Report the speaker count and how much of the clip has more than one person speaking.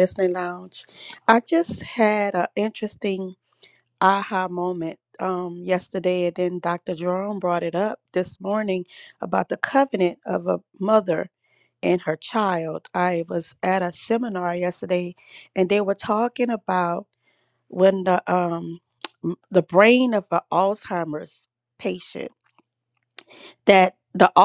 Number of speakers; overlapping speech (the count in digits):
1, no overlap